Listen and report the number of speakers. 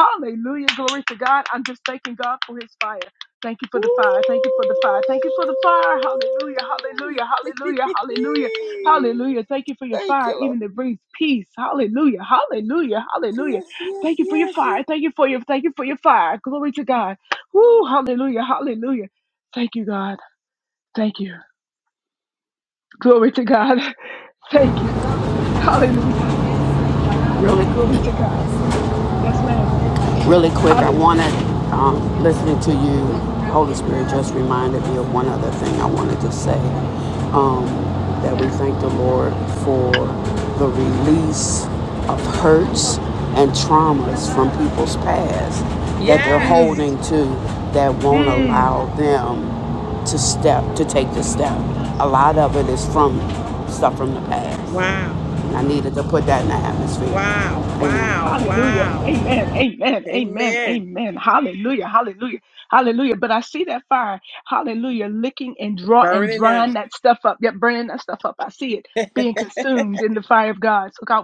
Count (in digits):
3